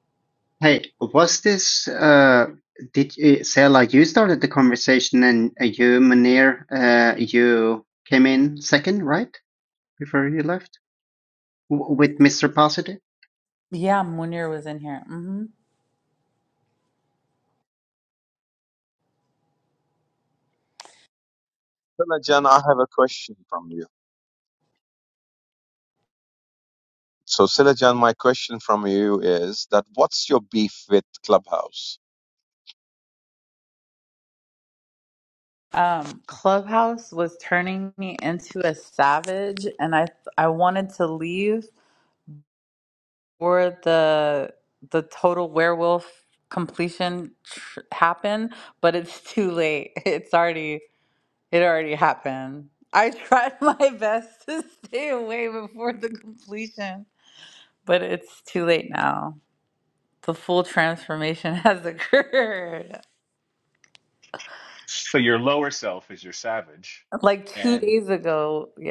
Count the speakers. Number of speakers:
4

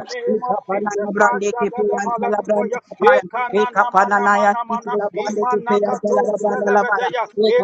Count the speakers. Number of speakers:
2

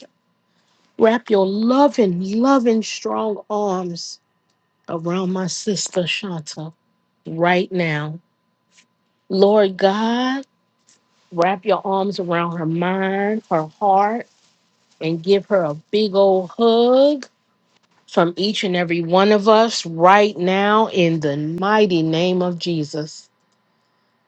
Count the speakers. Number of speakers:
1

